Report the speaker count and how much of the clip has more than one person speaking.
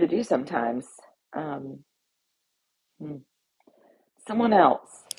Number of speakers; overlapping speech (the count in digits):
1, no overlap